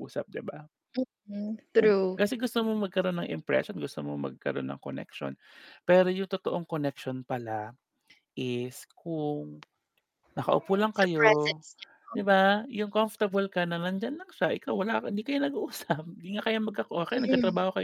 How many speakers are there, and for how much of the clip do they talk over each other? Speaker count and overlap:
two, about 8%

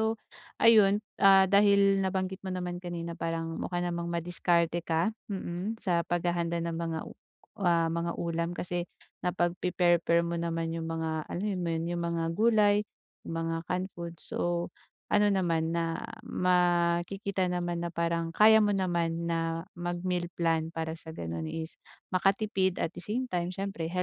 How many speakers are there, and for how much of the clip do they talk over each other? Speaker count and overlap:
one, no overlap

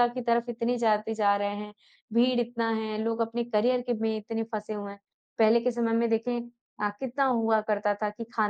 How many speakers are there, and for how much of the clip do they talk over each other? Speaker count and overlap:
one, no overlap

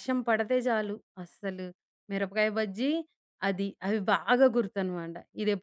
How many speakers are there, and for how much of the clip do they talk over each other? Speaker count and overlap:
one, no overlap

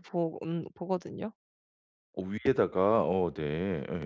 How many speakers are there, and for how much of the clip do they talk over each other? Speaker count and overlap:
two, no overlap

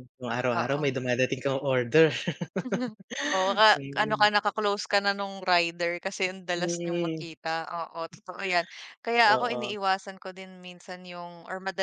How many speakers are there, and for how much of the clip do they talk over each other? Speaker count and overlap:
two, about 17%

